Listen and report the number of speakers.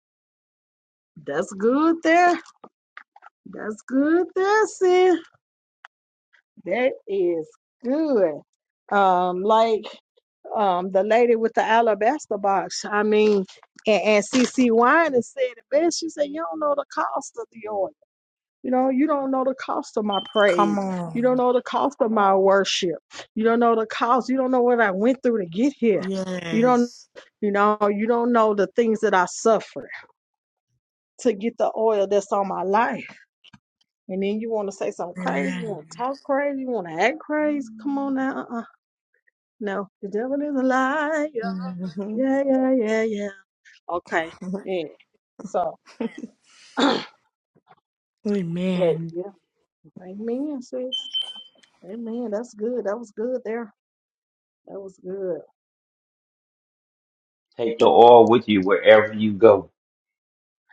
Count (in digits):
3